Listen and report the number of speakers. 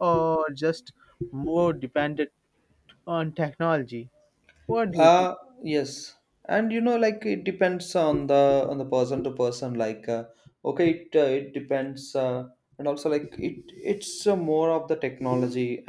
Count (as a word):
two